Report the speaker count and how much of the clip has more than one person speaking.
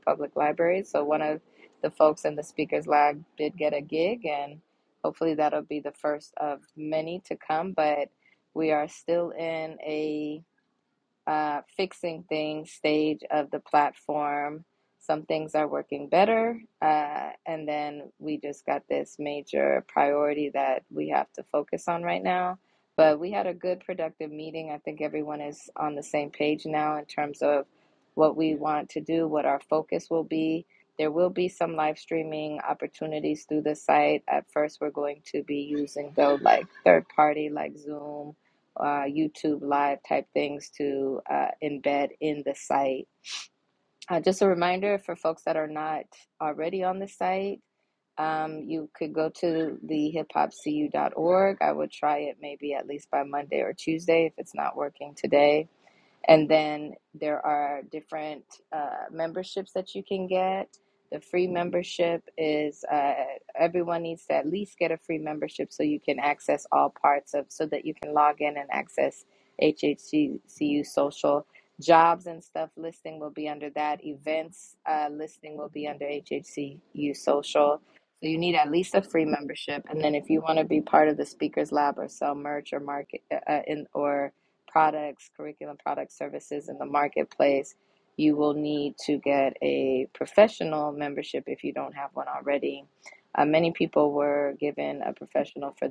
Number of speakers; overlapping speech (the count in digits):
1, no overlap